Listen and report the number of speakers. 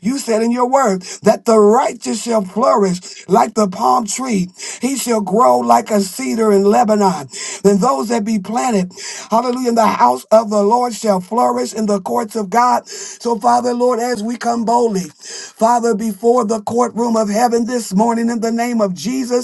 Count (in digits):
1